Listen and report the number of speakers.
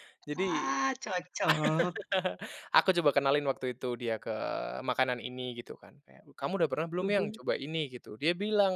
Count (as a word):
two